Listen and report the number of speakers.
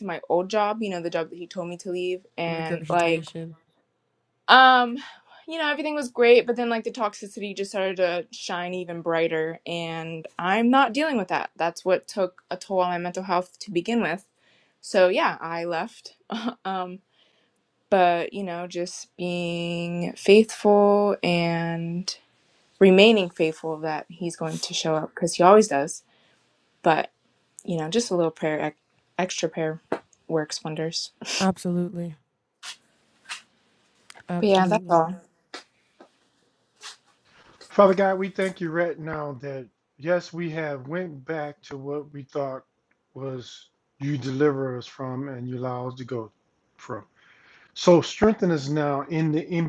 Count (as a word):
three